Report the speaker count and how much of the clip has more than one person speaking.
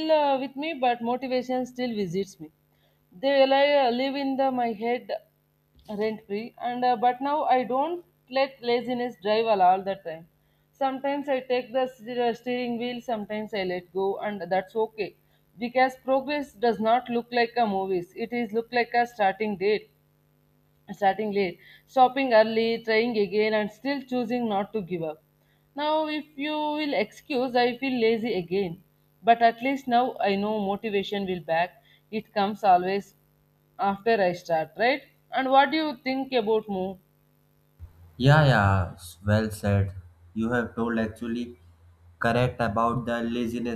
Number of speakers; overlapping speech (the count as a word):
two, no overlap